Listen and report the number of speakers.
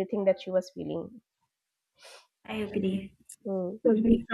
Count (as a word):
two